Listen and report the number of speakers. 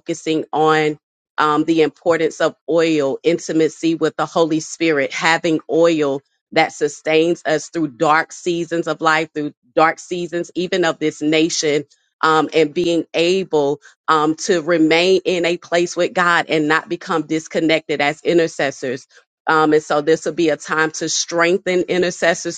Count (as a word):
one